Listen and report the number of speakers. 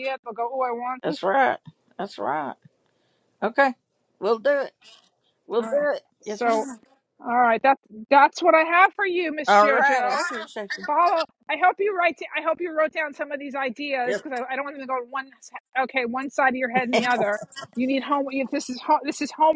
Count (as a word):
two